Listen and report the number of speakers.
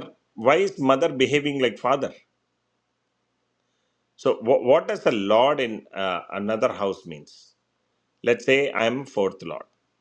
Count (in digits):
1